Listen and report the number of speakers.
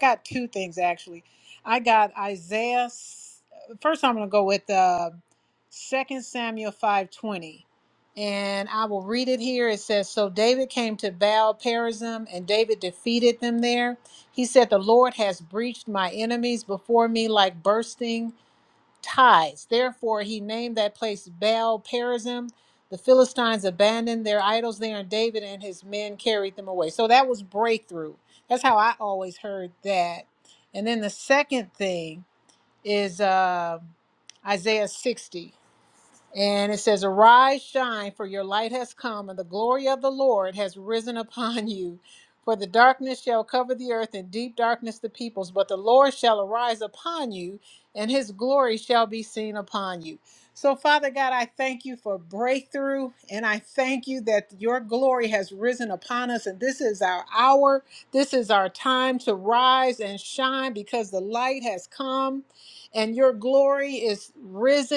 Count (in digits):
1